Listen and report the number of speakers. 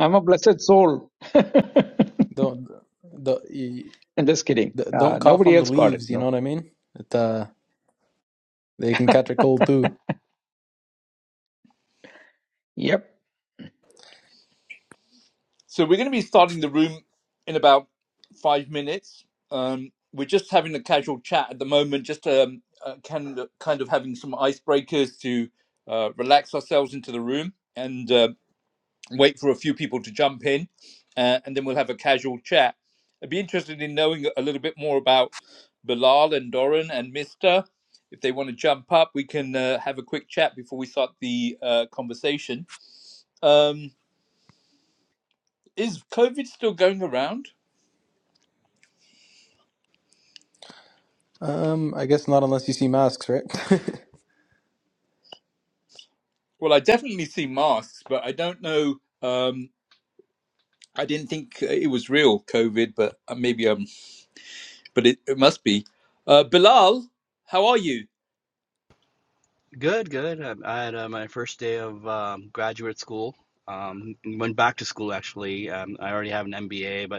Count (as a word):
four